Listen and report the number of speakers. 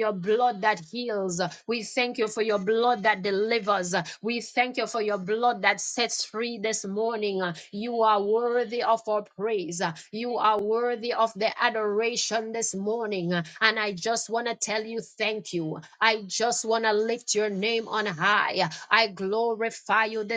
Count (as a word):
one